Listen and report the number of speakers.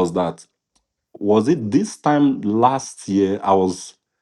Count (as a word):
one